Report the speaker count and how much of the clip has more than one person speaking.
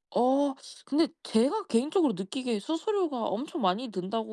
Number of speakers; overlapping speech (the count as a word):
one, no overlap